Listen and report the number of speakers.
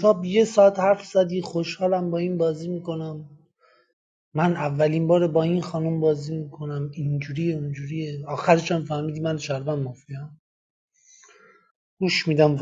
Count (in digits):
1